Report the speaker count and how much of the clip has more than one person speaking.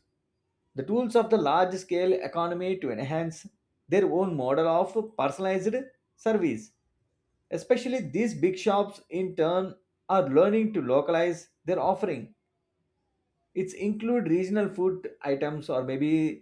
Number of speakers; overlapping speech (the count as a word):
one, no overlap